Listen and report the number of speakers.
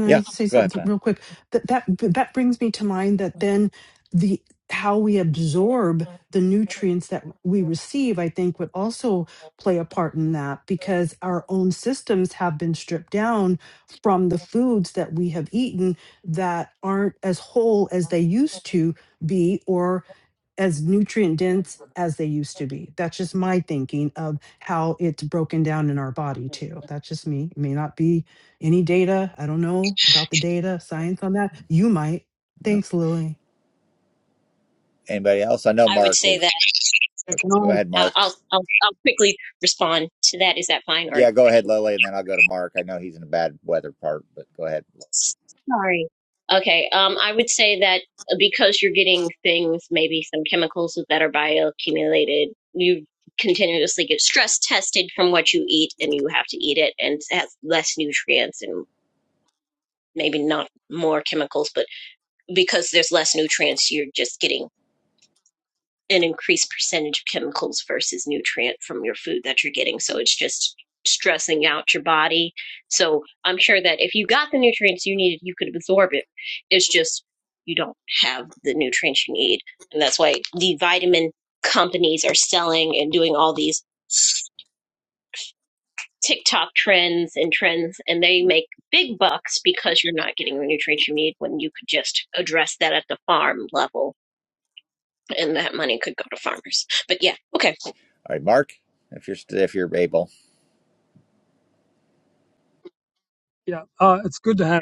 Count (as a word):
four